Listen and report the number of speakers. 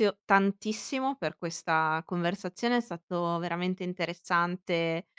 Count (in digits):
1